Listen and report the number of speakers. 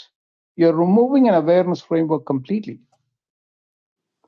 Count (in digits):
1